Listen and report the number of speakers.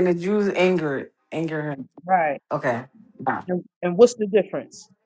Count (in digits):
2